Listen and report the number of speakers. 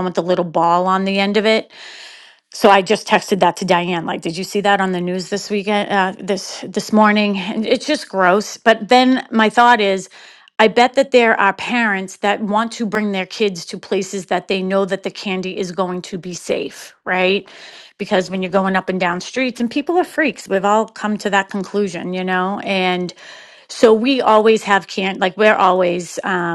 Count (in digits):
1